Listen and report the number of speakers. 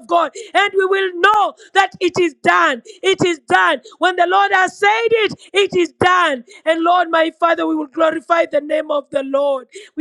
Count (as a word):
one